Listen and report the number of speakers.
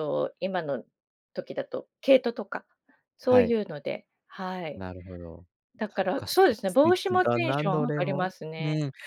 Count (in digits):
2